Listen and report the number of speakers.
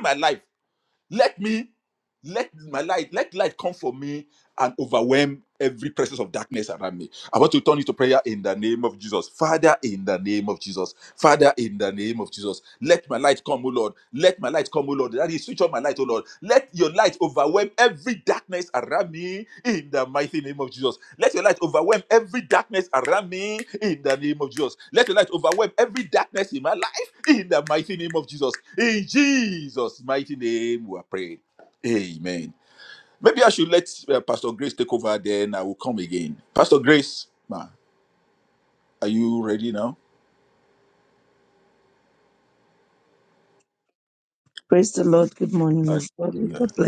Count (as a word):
two